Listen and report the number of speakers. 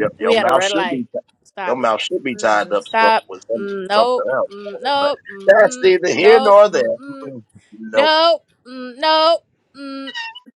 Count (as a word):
two